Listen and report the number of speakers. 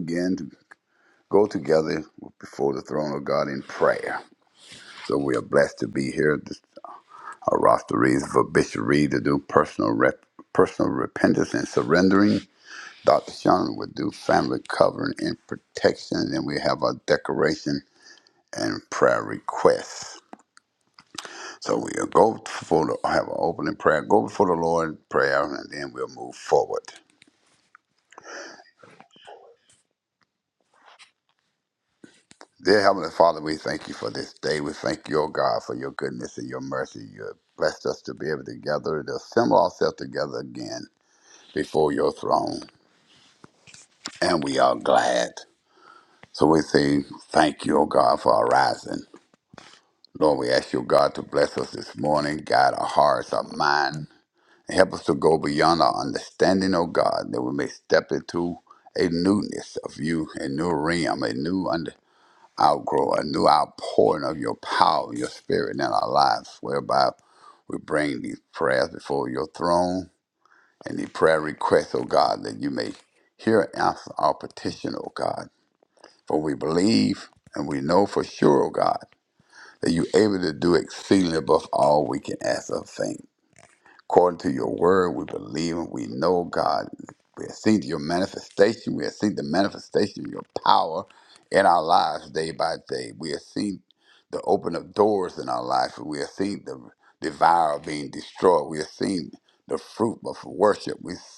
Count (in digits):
1